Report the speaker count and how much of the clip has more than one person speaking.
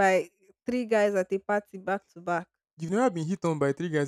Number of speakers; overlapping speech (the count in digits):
2, no overlap